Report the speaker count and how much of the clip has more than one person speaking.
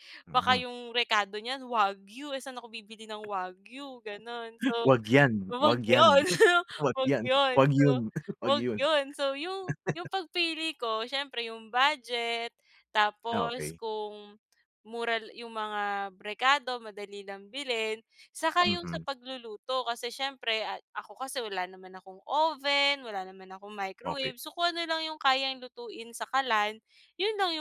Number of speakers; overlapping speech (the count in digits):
2, about 12%